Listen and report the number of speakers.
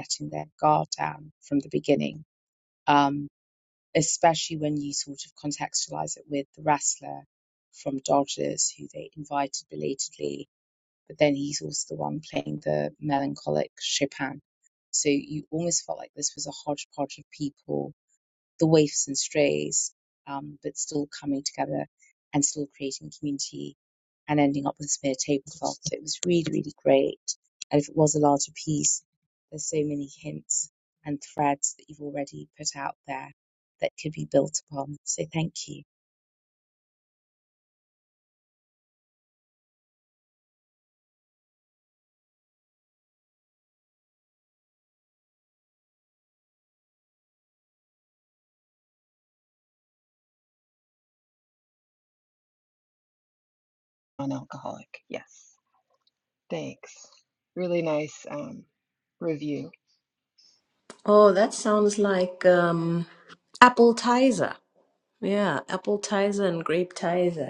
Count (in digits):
3